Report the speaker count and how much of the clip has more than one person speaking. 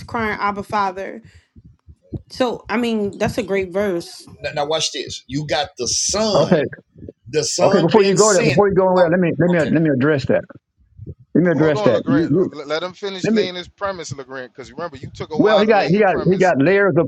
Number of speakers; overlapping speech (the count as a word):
four, about 23%